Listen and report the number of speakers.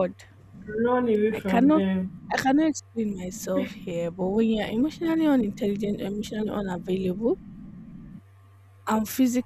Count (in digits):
2